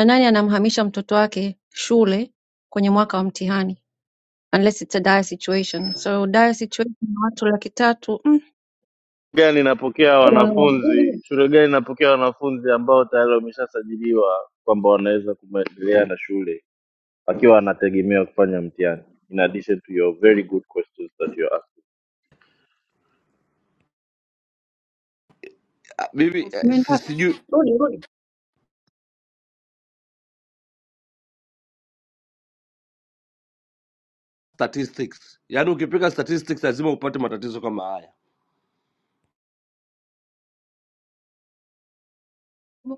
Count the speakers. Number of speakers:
3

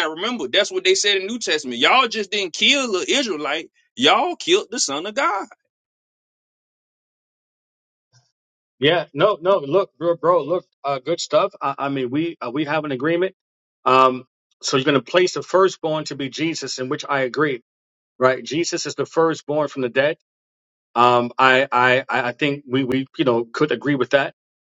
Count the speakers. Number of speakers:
2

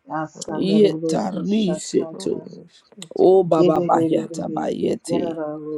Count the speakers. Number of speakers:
3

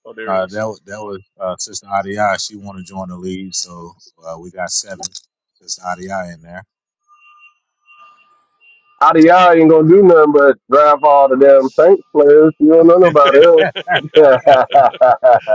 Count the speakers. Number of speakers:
3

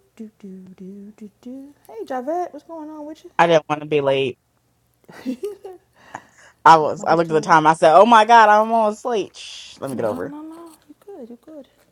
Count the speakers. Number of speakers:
2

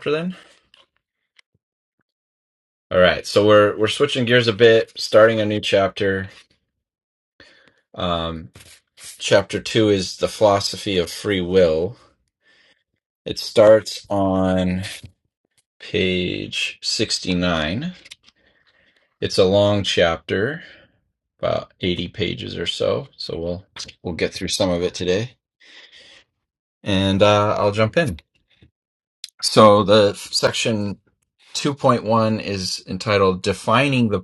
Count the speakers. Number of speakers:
1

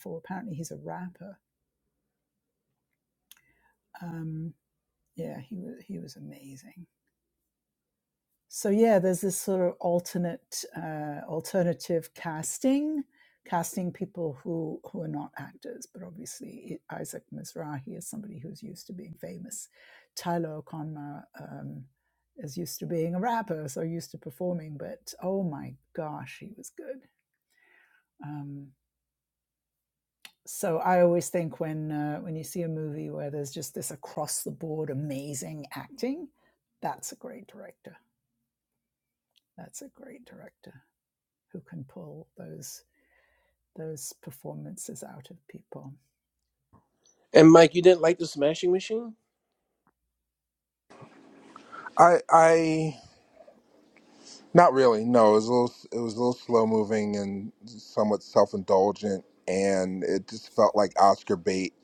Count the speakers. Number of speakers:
3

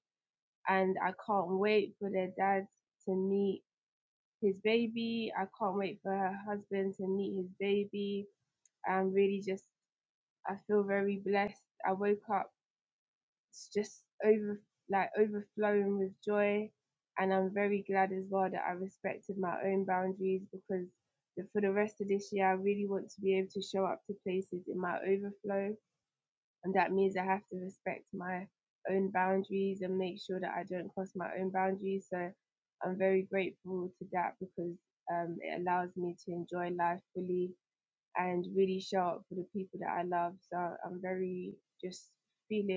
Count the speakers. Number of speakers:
1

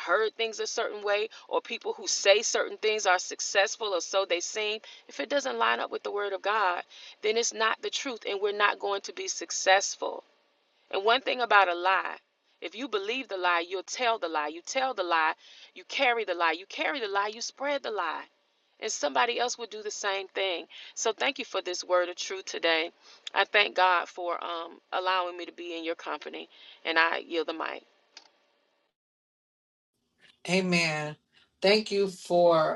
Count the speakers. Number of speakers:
2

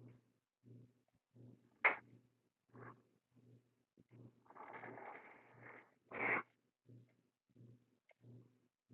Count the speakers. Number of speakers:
0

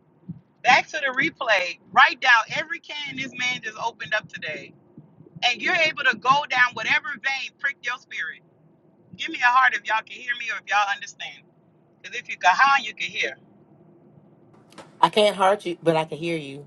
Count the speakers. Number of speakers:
2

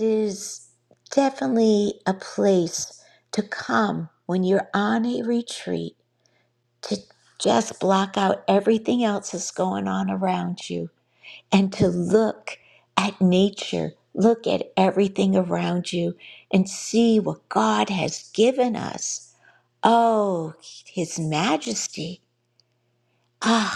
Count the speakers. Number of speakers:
1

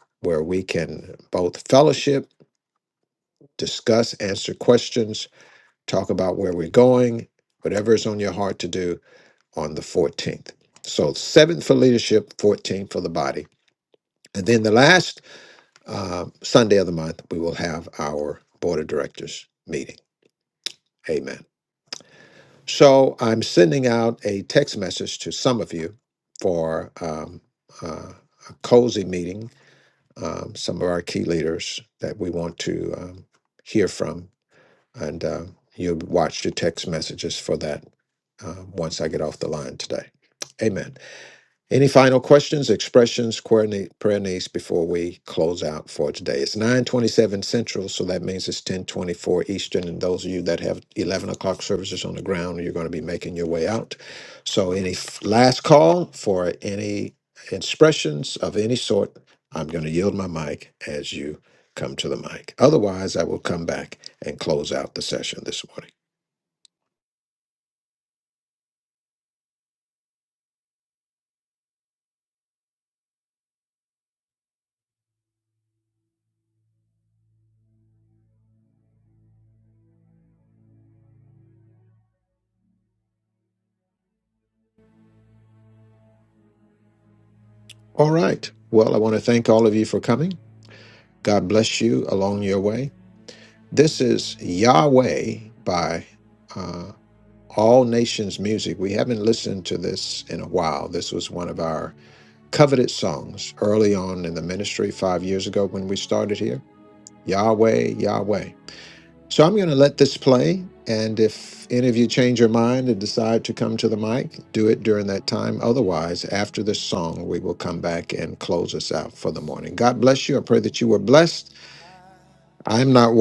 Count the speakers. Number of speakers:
2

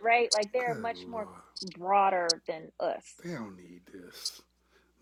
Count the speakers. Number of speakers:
2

